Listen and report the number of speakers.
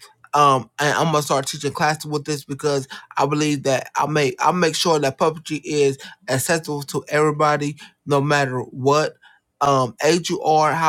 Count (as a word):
one